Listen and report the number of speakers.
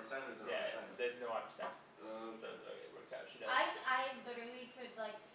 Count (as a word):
three